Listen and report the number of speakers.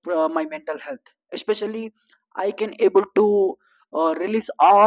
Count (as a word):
one